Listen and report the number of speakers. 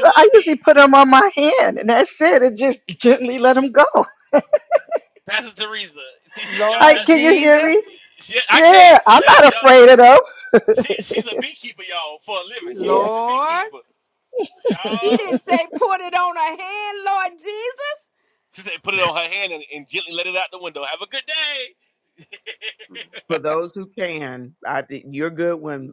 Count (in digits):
4